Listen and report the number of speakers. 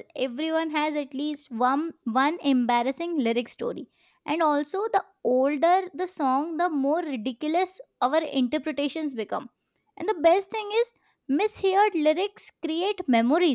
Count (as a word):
one